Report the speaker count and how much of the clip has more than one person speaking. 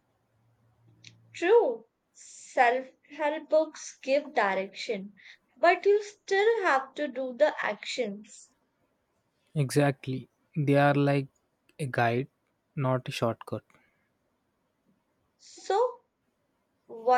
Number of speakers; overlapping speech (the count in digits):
2, no overlap